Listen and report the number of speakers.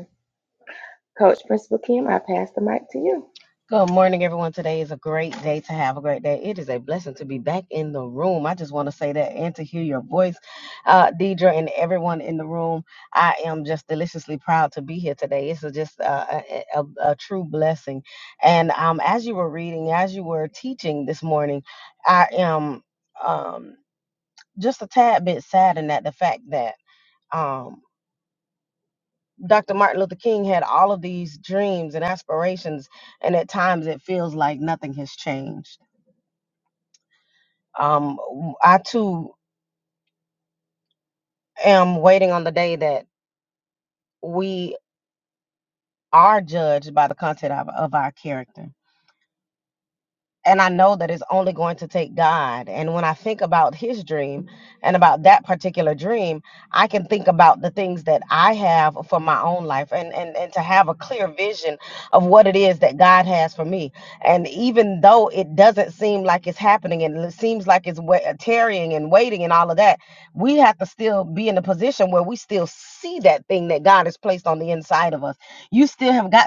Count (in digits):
2